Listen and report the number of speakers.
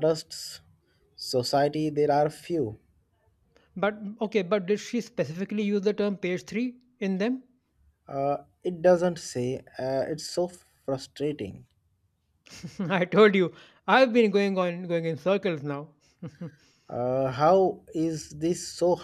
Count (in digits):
2